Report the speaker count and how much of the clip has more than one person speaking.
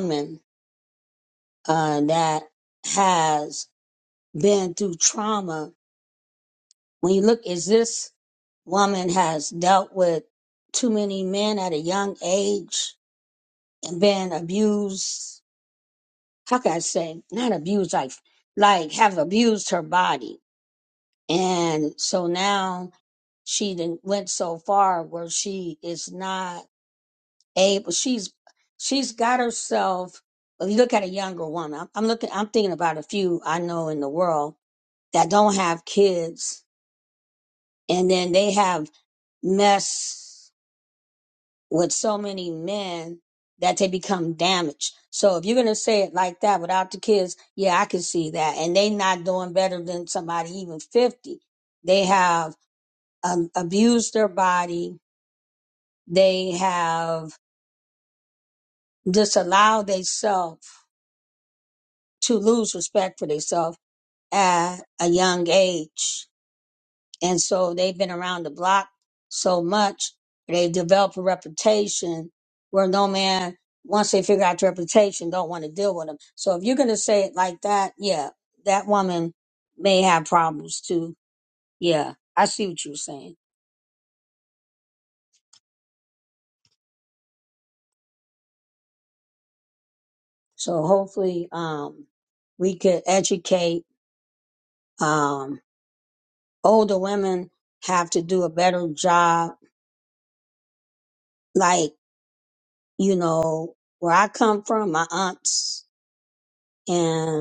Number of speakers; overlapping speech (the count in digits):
1, no overlap